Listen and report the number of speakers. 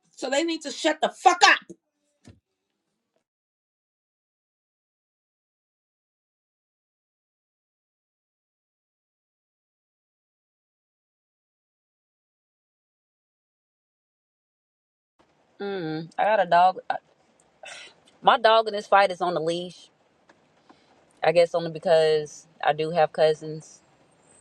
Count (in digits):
2